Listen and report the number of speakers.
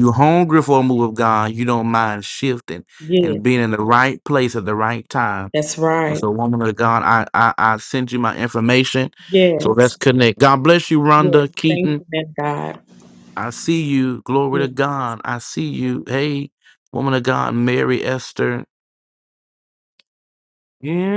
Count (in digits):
2